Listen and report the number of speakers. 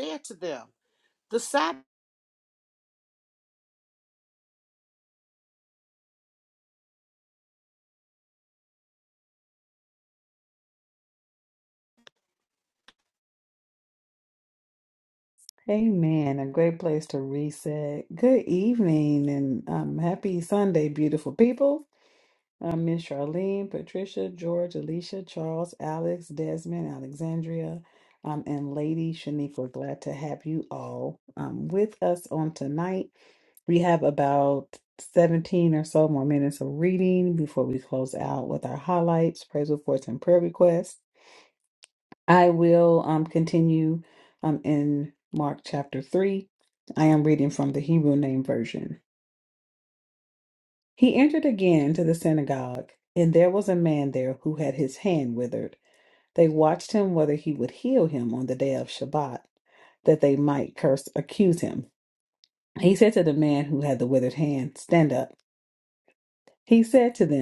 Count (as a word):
two